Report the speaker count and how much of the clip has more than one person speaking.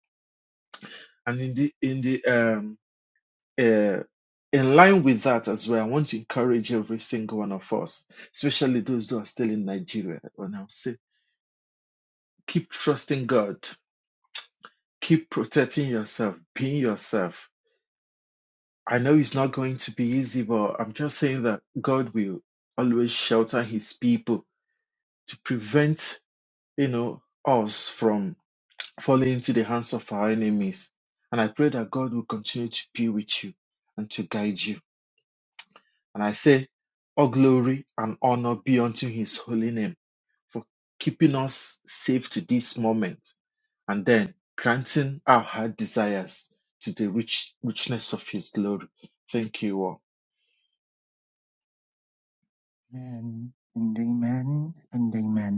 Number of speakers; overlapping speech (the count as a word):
two, no overlap